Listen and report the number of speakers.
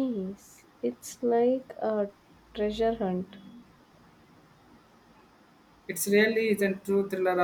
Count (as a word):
two